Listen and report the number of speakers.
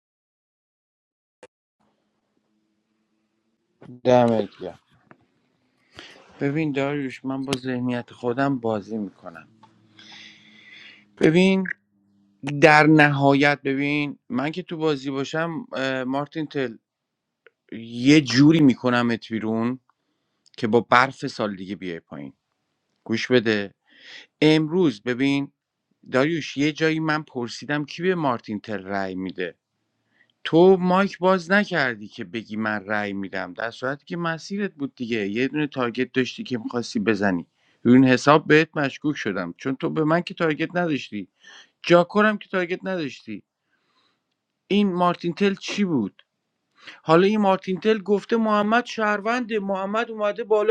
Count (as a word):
one